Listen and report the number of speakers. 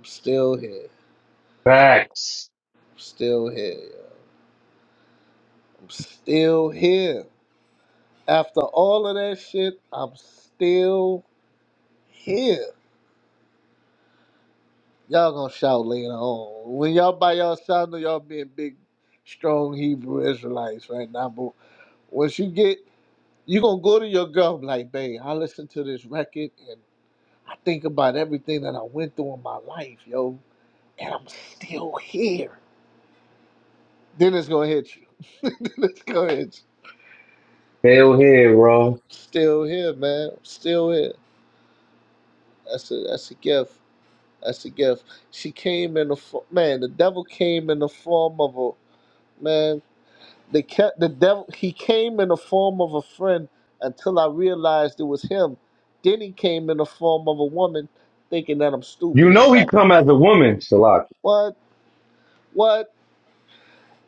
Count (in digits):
2